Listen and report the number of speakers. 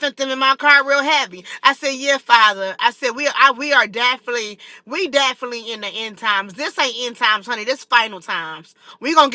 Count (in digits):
1